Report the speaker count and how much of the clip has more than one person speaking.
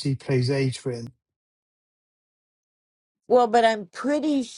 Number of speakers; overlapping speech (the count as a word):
two, no overlap